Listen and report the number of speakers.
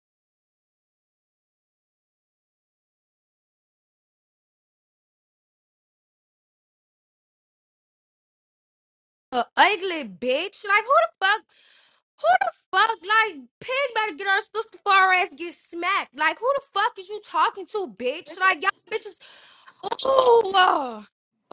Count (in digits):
1